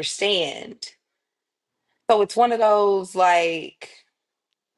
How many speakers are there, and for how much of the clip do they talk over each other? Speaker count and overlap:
one, no overlap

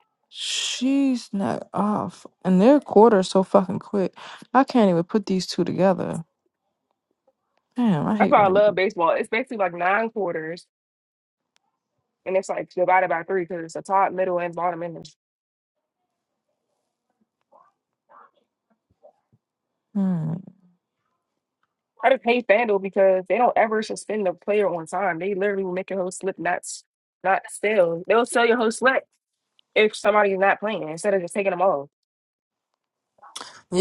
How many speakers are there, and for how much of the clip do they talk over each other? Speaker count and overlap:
two, about 1%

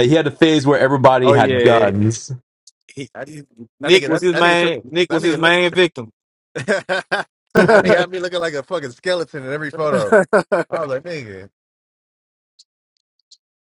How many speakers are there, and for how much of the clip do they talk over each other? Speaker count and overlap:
three, about 19%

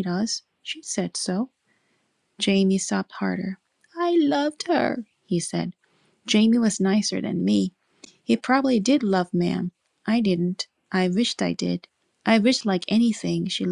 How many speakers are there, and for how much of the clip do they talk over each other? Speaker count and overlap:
one, no overlap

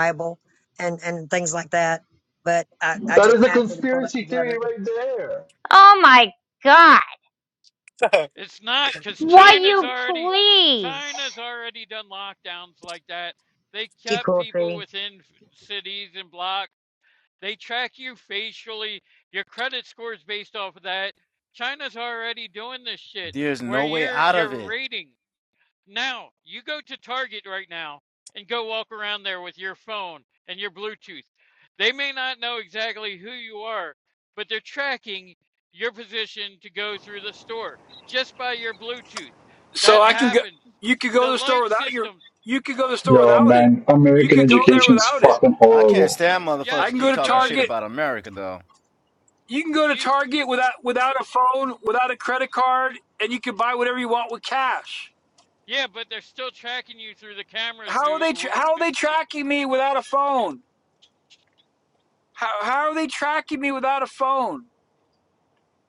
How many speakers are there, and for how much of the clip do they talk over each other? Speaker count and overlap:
six, about 15%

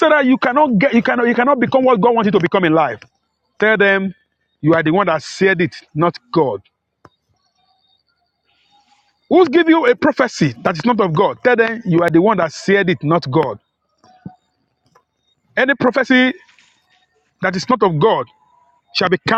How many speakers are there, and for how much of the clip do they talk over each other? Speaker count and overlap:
one, no overlap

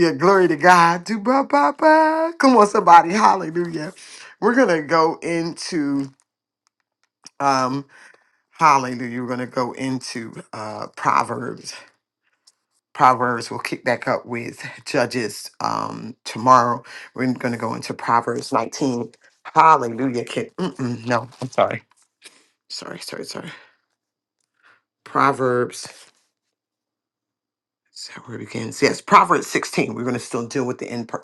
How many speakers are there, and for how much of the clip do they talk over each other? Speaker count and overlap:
one, no overlap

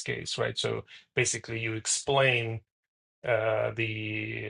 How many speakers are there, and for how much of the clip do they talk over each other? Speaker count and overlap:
one, no overlap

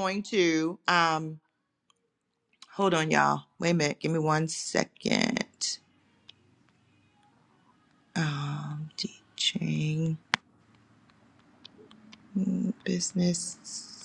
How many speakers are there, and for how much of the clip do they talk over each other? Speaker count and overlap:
one, no overlap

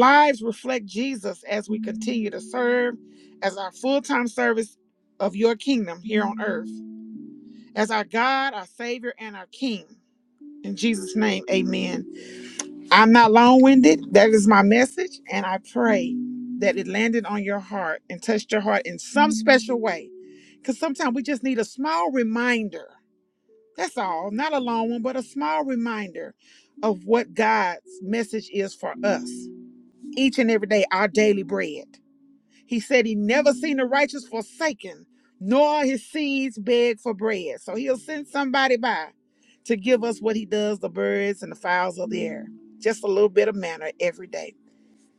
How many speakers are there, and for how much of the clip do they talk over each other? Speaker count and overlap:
one, no overlap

